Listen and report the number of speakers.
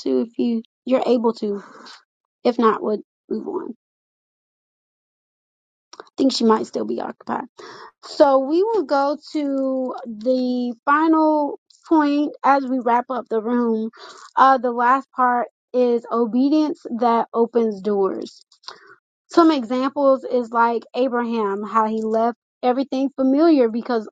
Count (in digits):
1